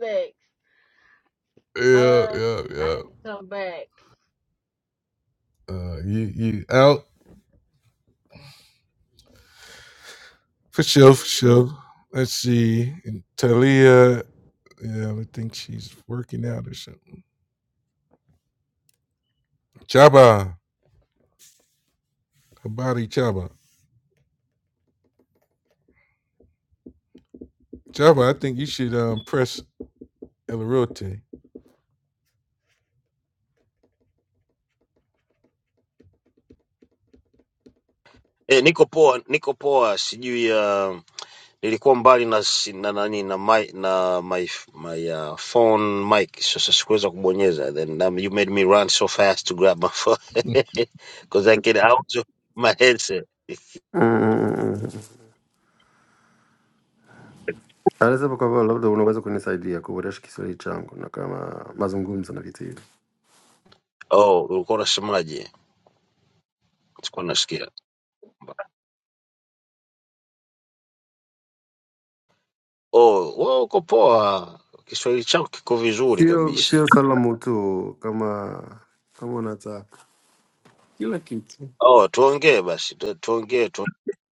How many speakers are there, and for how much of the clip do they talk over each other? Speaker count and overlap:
4, about 2%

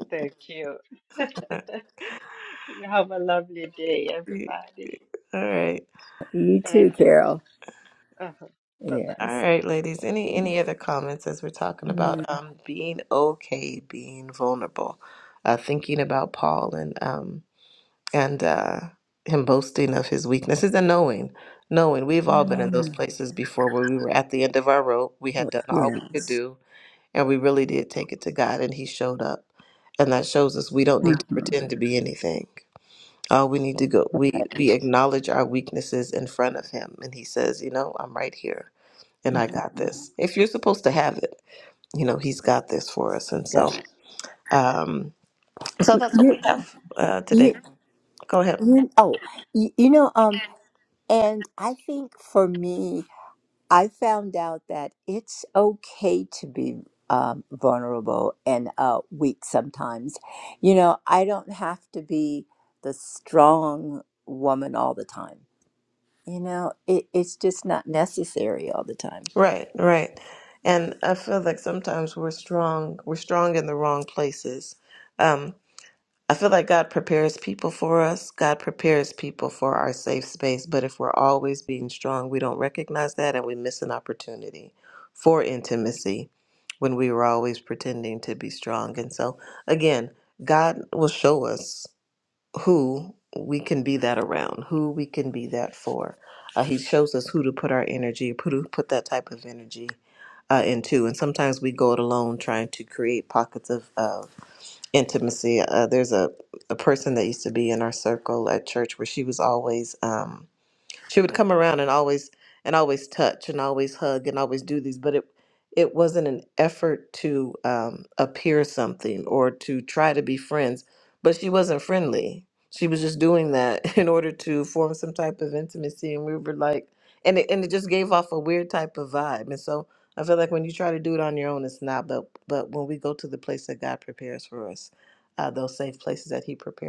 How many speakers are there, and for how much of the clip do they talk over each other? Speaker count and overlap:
3, about 3%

